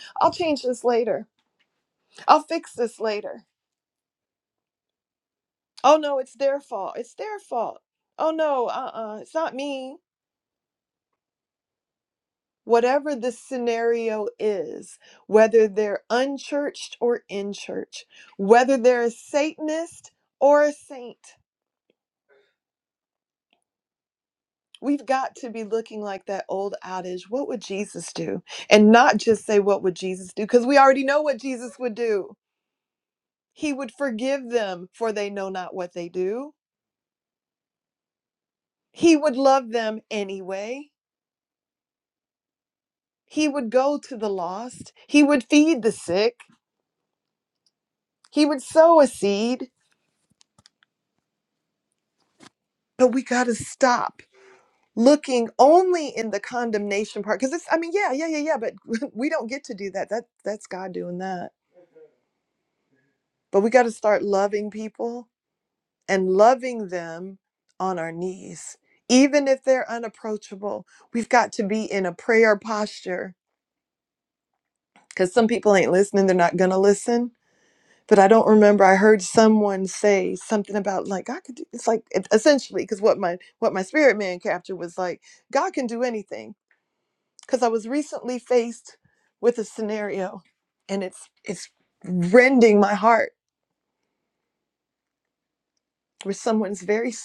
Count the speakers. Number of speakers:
one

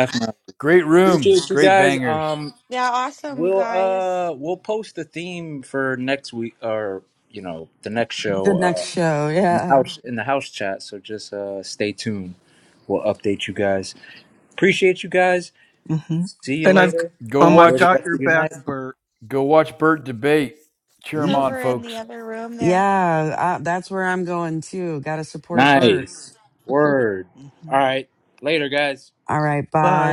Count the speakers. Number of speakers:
five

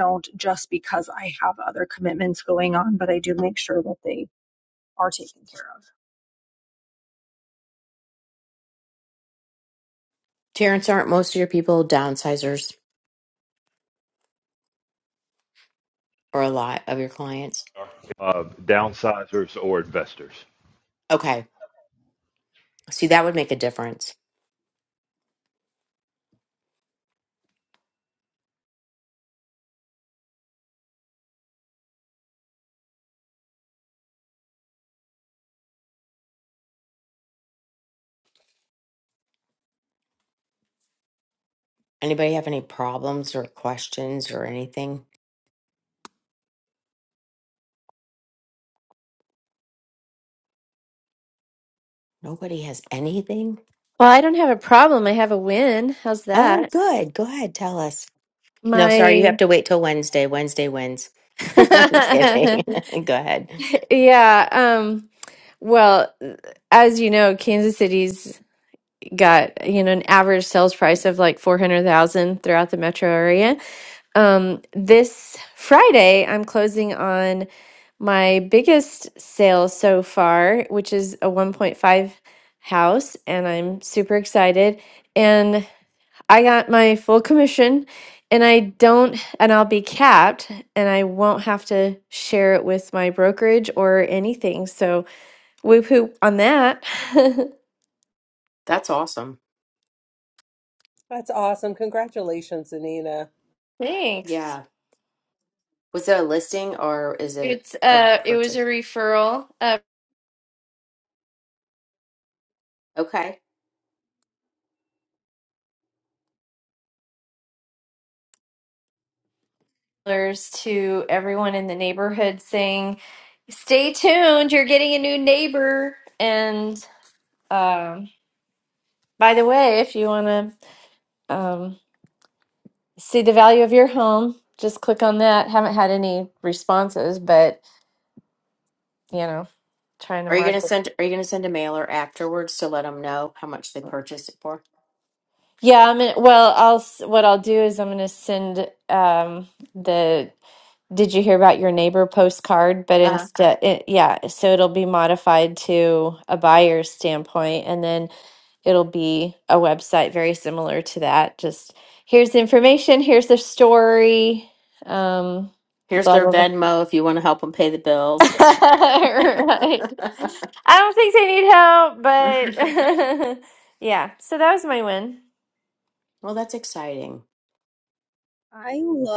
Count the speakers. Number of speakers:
five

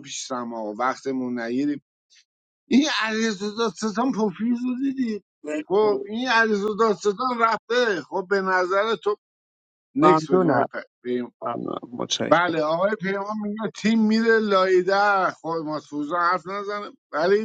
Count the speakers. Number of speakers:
two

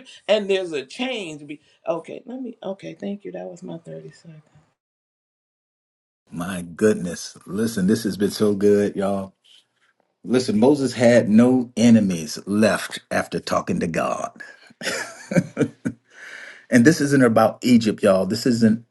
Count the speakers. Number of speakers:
two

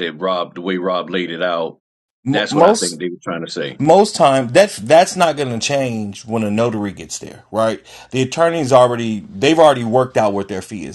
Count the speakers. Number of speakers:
two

